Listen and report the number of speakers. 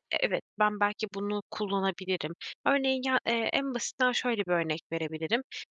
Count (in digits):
1